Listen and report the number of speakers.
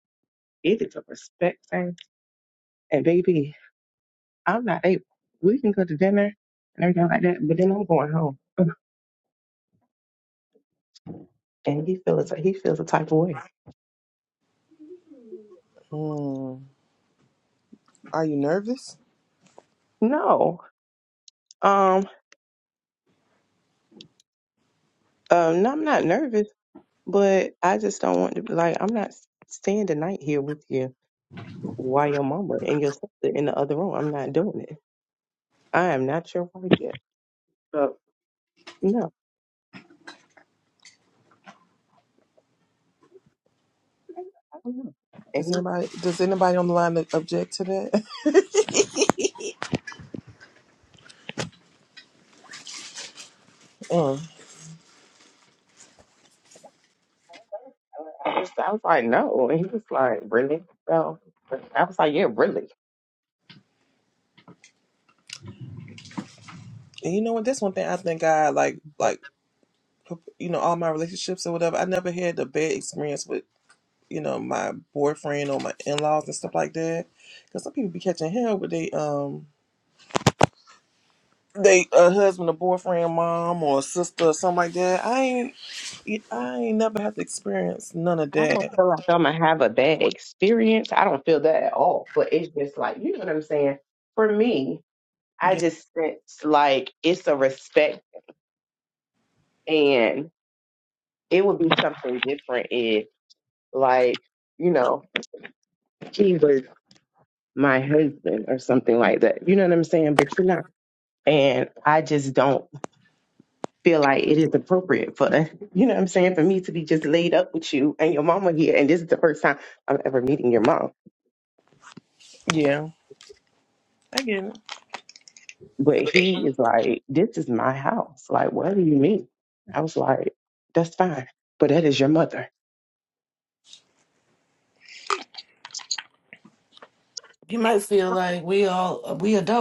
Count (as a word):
three